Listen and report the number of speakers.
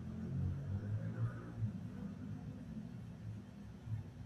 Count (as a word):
zero